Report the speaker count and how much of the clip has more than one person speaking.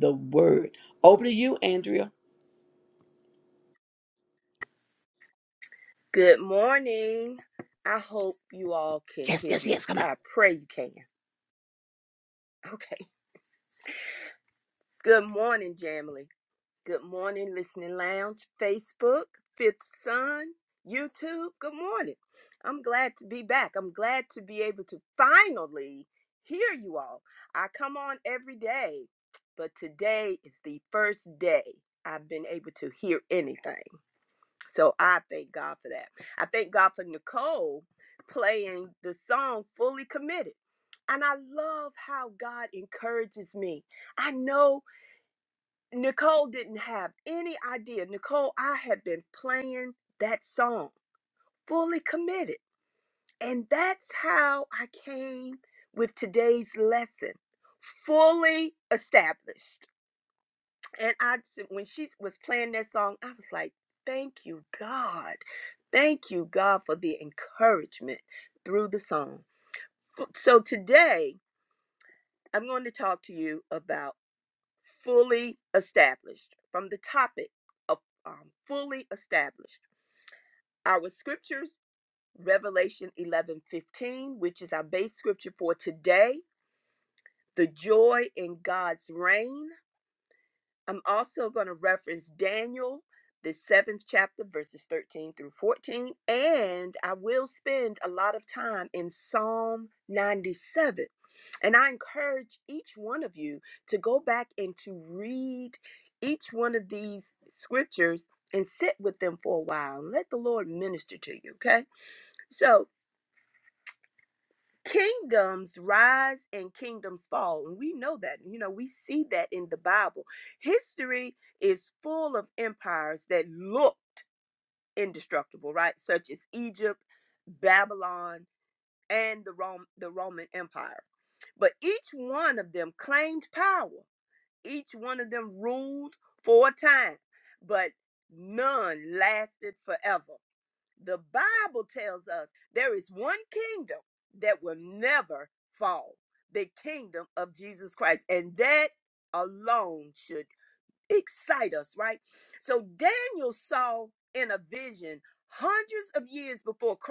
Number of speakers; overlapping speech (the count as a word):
two, about 1%